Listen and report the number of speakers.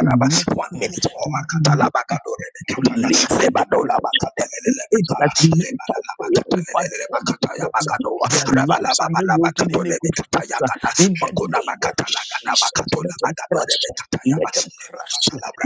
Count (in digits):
2